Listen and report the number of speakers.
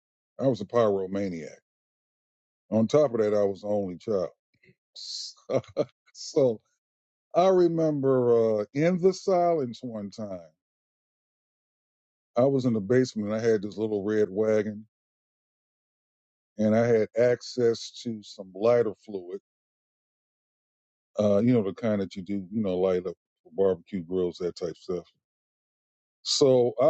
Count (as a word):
one